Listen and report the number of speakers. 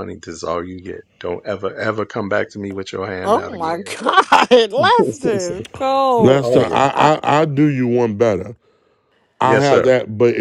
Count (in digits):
3